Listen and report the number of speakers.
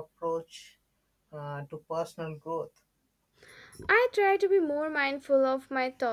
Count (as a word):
two